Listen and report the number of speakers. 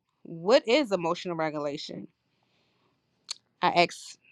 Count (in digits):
1